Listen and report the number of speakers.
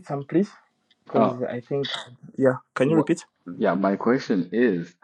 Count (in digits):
2